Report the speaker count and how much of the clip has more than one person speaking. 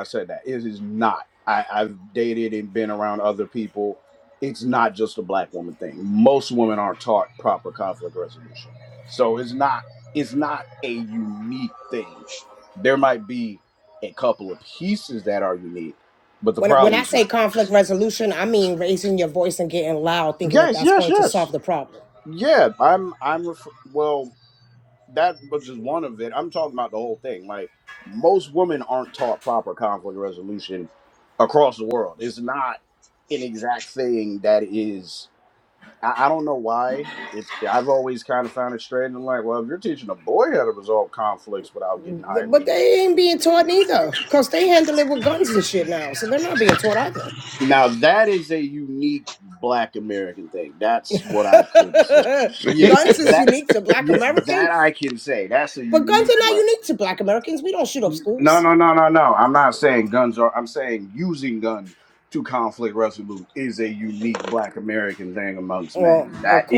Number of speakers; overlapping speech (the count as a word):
two, about 8%